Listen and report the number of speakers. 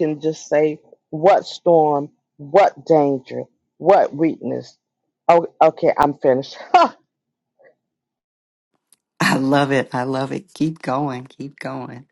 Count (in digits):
2